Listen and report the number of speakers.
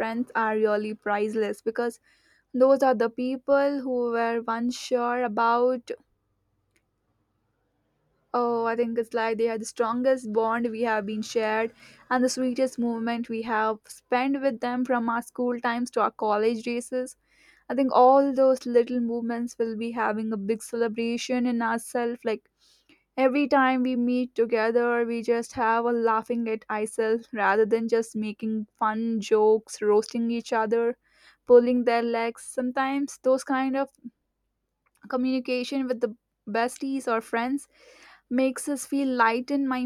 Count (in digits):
1